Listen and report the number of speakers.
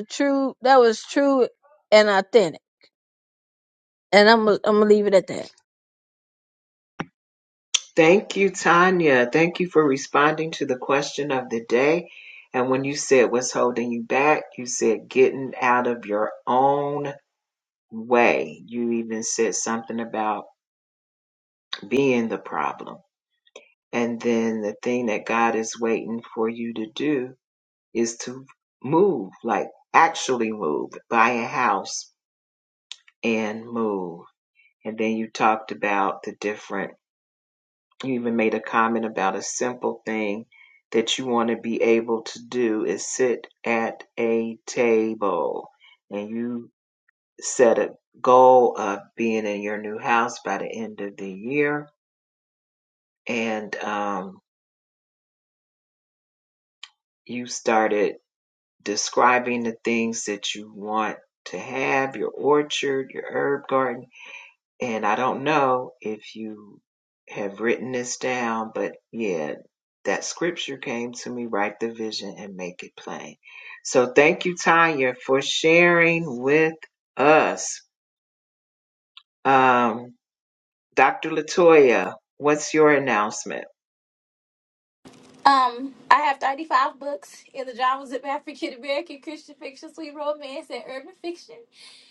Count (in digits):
3